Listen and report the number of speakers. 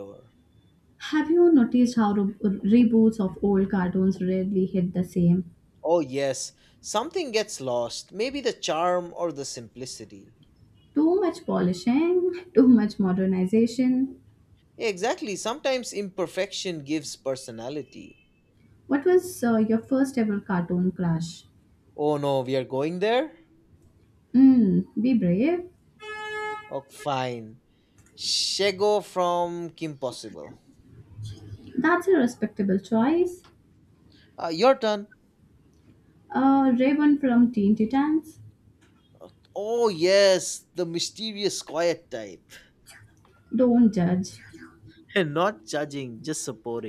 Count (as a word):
two